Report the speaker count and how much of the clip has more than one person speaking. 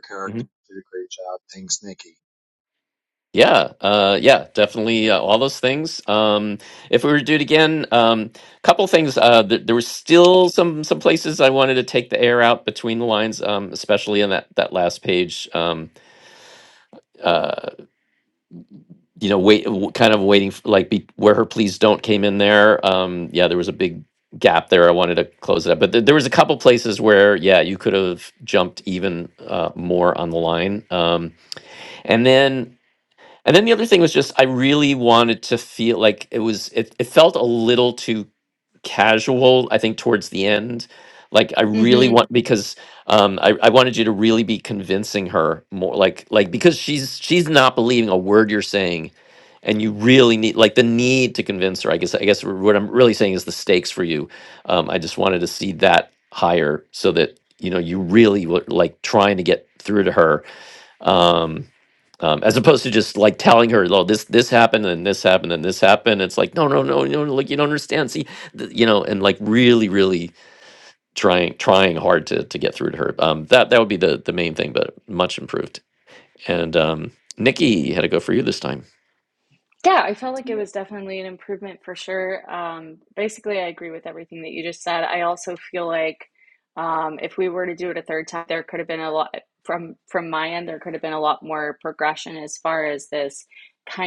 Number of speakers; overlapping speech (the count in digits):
3, about 1%